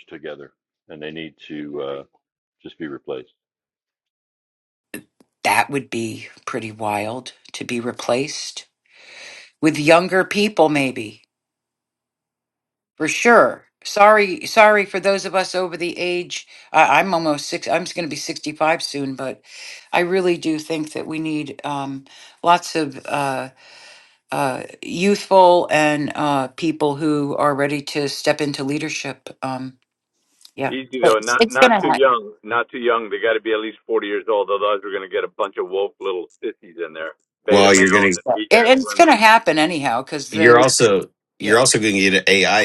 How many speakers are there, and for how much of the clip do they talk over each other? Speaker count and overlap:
four, about 5%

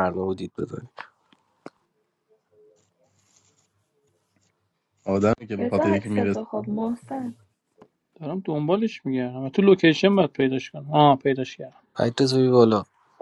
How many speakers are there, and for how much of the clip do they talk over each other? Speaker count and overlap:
four, about 6%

